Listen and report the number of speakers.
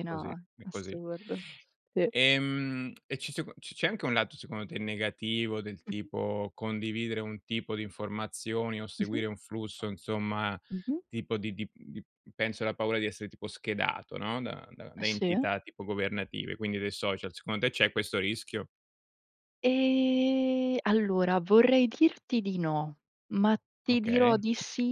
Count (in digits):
2